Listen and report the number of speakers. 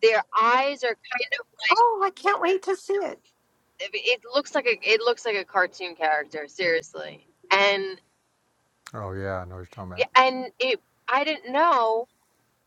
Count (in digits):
3